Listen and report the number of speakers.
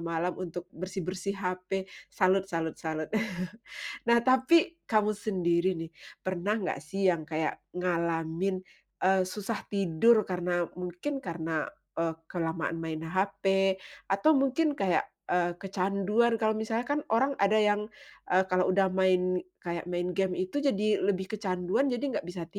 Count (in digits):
1